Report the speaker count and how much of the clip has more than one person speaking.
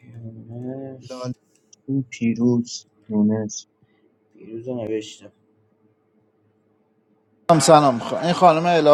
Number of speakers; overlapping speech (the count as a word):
three, no overlap